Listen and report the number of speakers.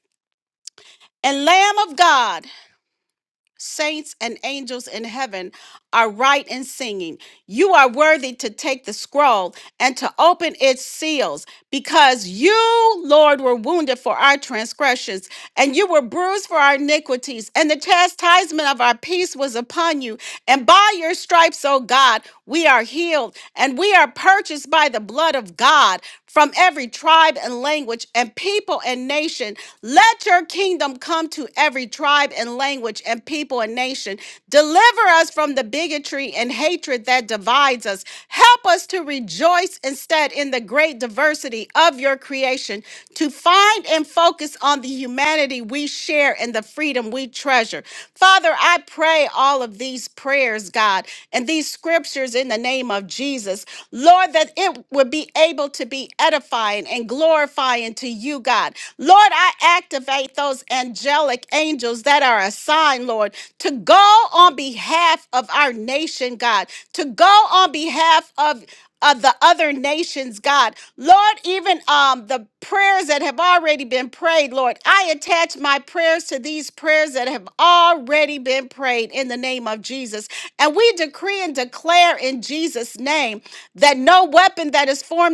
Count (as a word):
one